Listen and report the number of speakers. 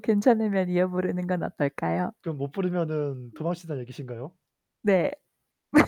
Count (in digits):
2